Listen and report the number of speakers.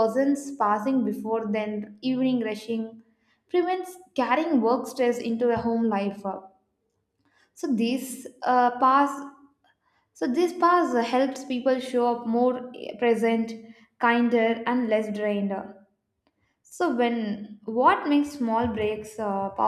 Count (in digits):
1